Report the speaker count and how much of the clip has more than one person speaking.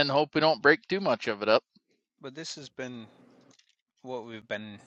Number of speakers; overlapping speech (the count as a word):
two, no overlap